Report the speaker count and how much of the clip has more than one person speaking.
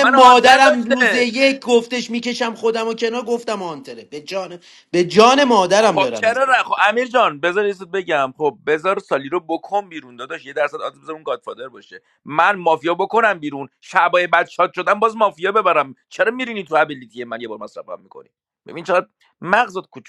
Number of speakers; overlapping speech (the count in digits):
2, about 9%